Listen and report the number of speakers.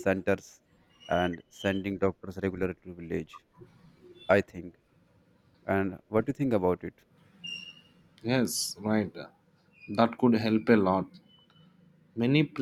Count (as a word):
two